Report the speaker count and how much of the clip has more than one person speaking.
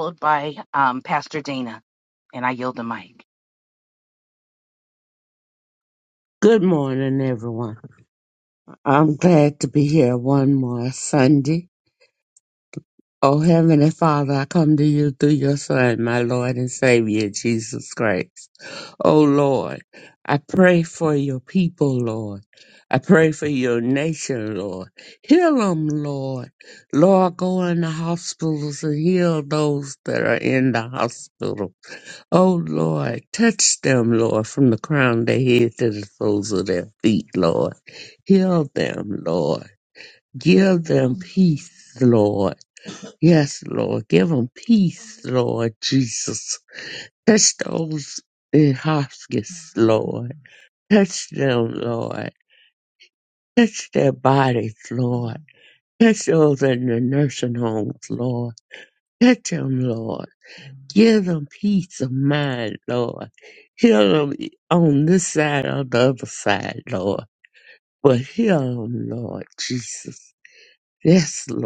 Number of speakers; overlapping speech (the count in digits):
2, no overlap